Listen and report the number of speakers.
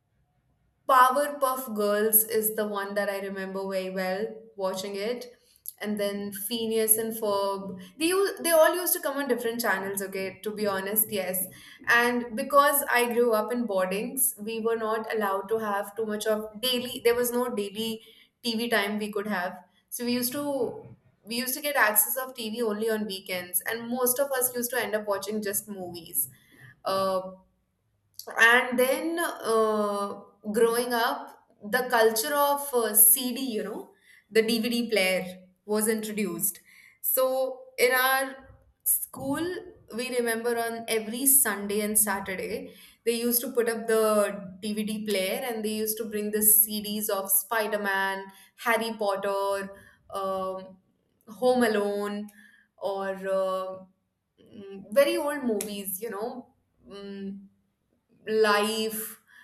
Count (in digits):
1